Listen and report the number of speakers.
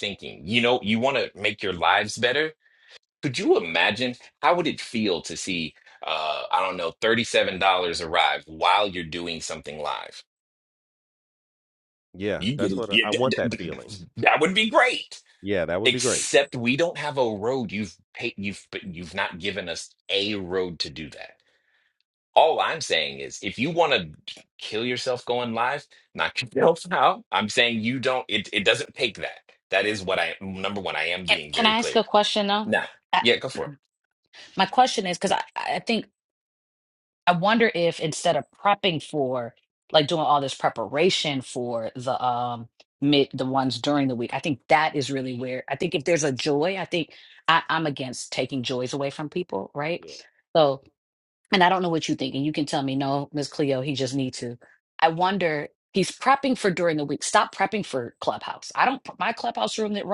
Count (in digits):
3